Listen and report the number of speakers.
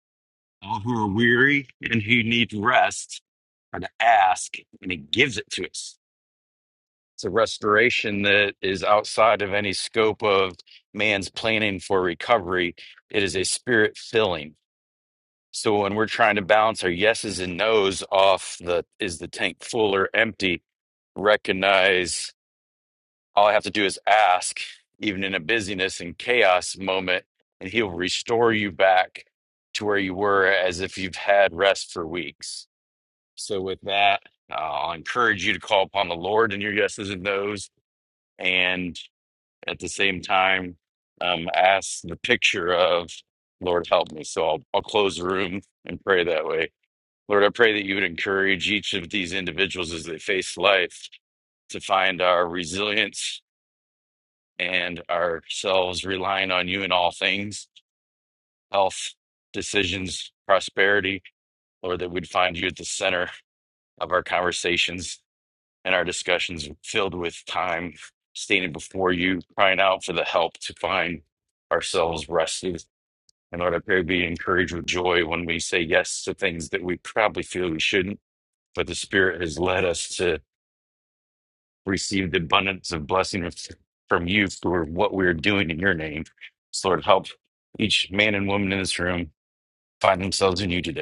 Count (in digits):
1